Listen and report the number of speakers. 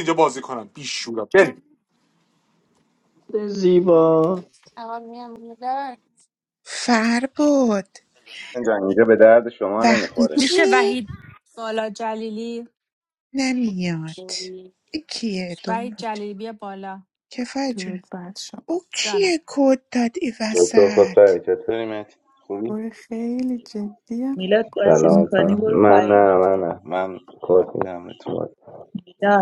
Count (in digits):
8